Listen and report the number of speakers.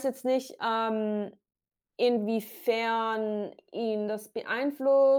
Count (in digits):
1